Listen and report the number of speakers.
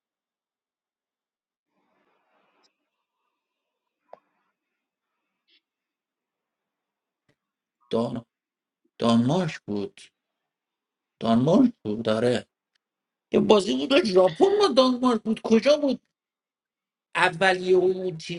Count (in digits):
1